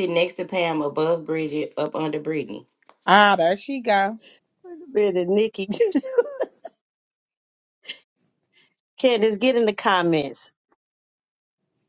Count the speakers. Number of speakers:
three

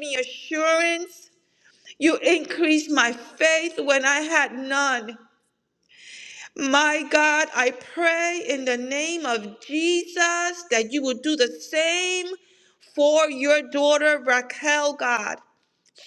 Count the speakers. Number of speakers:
one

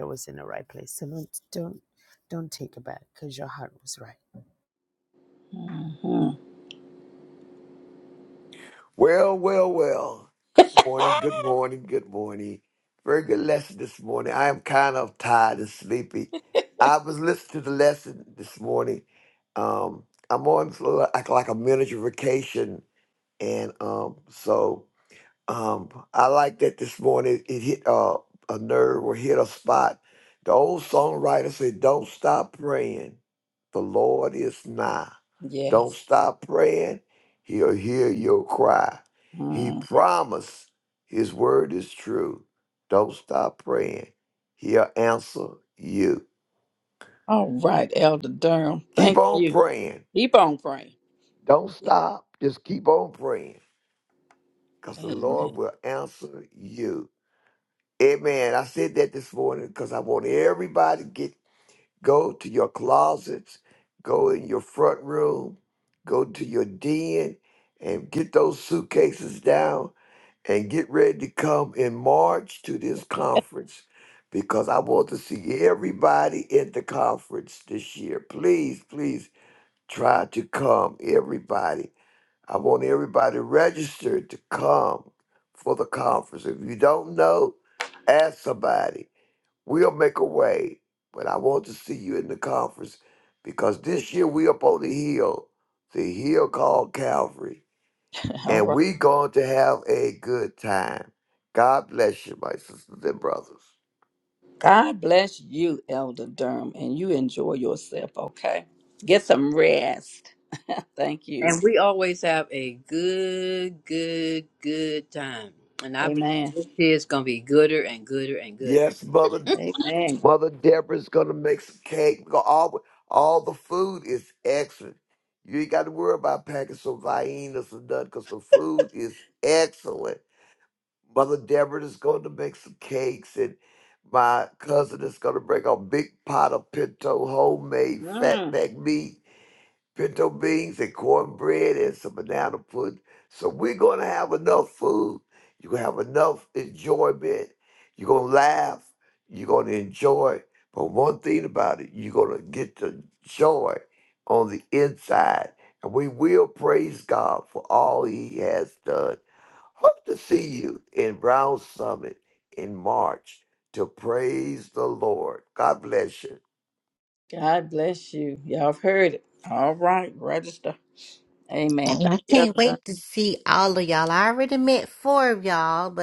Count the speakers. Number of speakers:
five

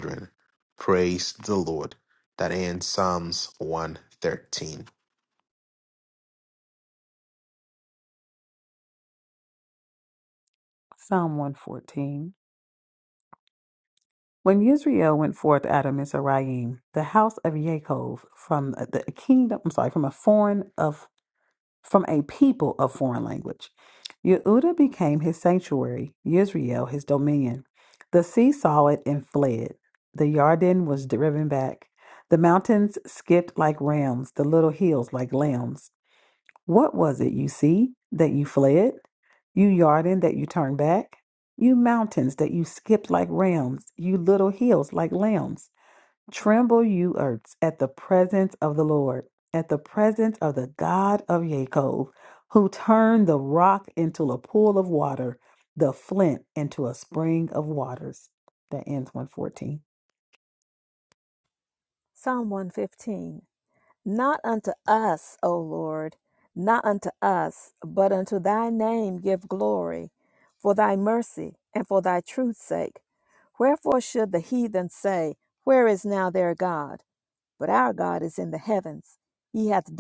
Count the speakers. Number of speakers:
three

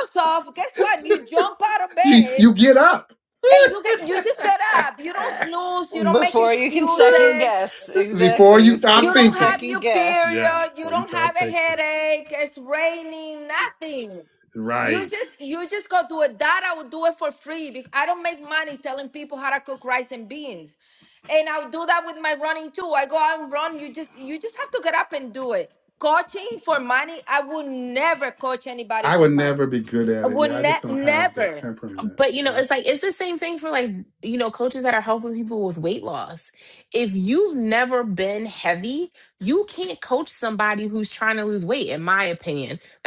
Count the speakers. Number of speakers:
four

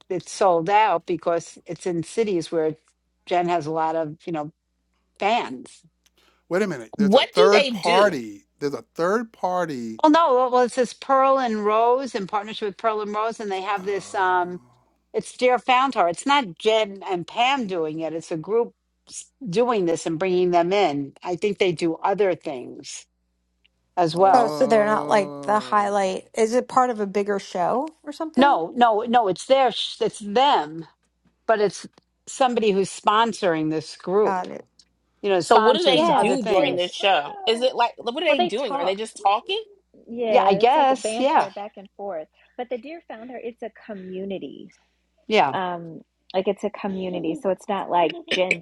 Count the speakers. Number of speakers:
five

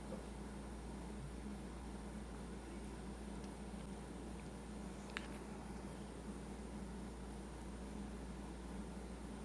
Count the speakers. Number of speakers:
zero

